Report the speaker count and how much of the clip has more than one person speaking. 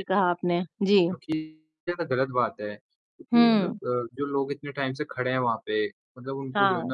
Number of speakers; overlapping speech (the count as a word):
two, about 13%